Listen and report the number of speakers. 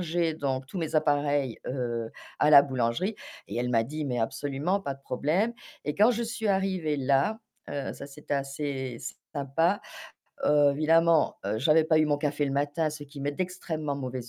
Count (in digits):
1